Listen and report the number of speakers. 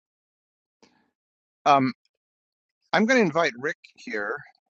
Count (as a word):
one